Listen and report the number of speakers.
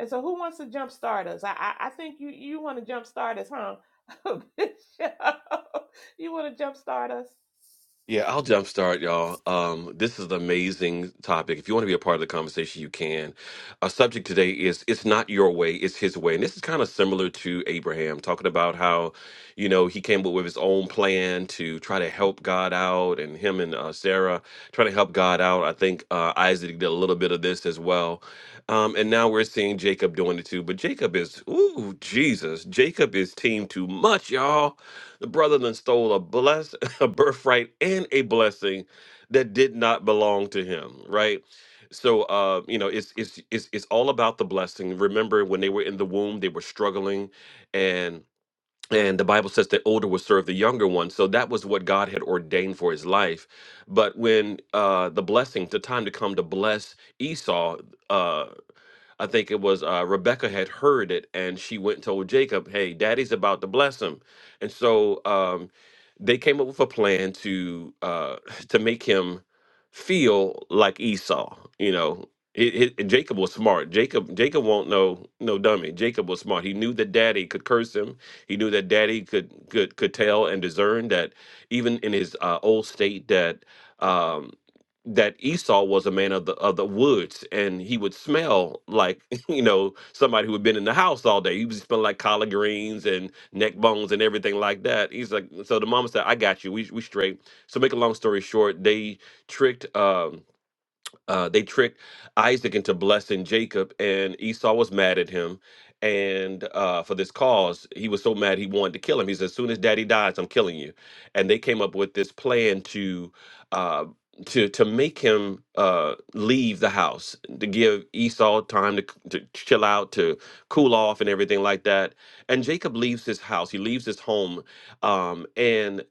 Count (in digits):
2